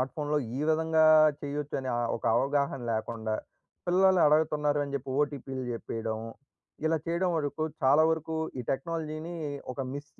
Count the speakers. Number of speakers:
1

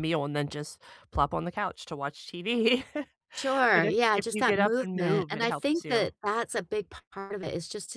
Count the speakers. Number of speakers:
2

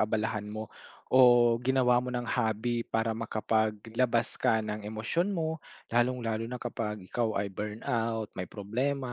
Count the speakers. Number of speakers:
1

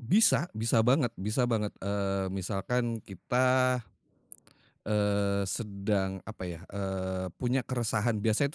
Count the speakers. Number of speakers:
1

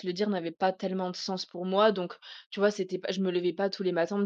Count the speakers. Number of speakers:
1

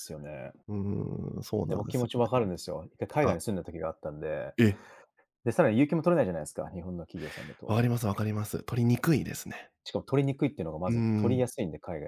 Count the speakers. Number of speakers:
2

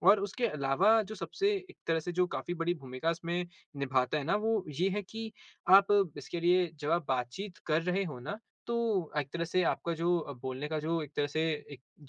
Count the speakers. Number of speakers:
1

